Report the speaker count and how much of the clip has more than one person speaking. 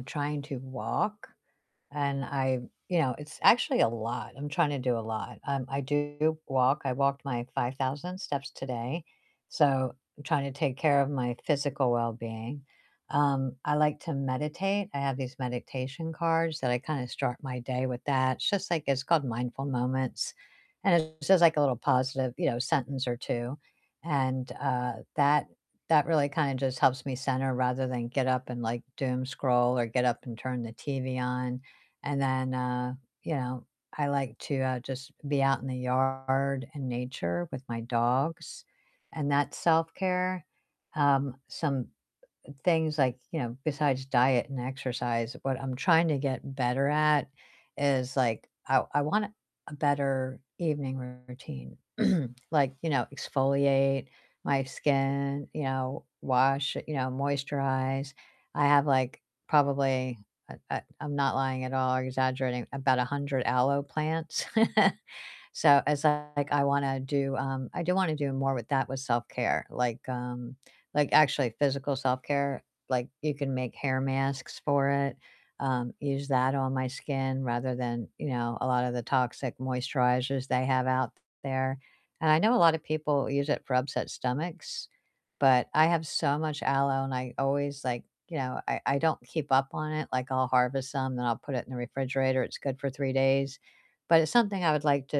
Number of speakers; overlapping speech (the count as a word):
one, no overlap